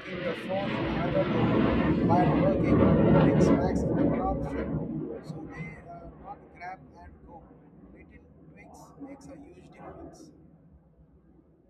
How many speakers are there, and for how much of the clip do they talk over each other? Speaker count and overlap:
one, no overlap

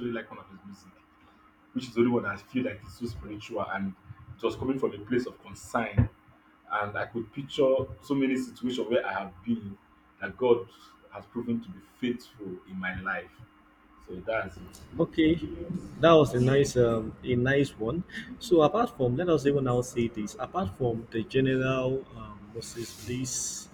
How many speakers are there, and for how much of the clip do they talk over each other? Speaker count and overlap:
two, no overlap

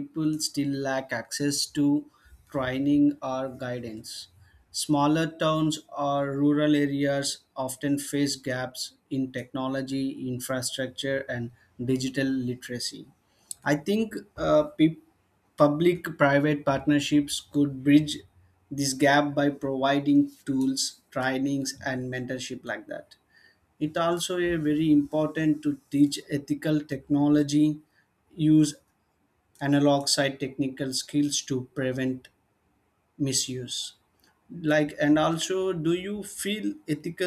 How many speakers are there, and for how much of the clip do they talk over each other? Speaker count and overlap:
one, no overlap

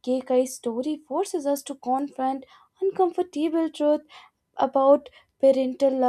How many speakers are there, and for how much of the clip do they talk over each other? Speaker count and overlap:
one, no overlap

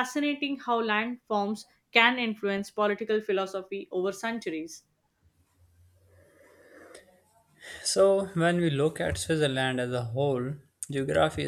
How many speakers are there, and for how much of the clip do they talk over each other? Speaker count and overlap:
two, no overlap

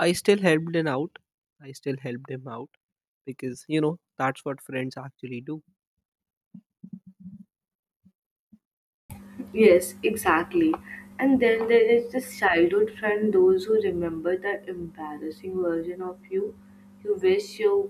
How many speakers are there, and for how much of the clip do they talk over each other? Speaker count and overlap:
two, no overlap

